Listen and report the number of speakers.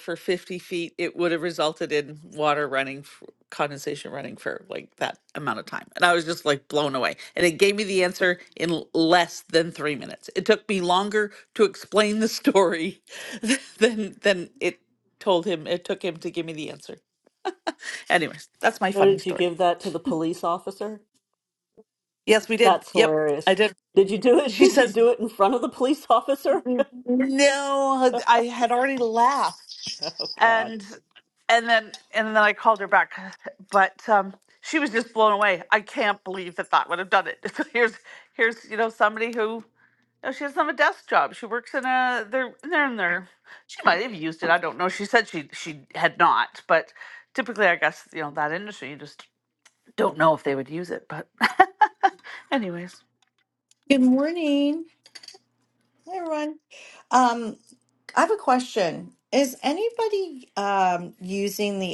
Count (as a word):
three